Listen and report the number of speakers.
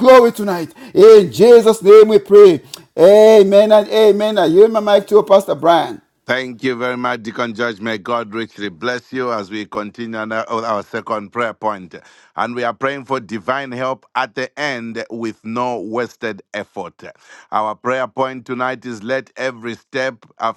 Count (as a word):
two